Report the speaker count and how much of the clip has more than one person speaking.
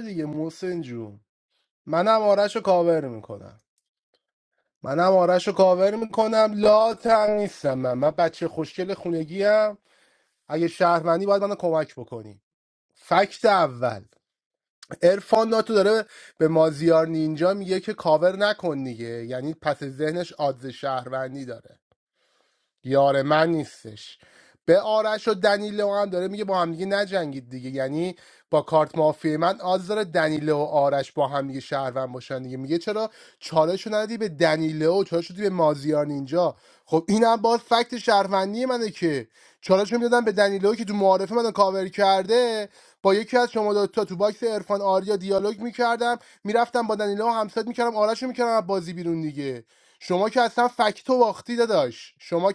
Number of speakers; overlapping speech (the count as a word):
one, no overlap